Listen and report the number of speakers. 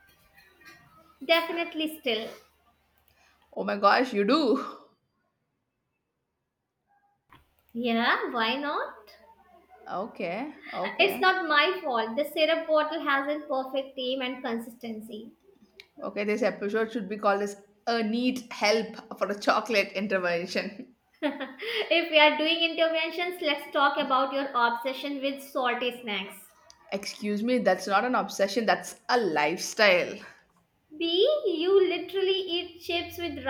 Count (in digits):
2